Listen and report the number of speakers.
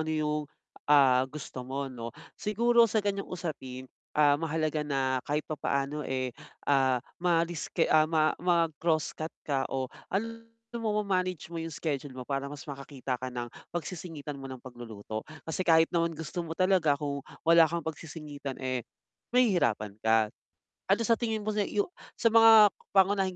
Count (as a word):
one